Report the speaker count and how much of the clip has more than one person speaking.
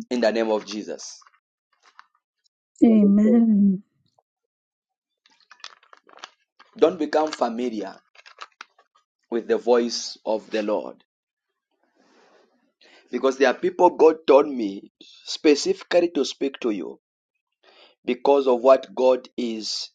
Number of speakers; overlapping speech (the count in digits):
2, no overlap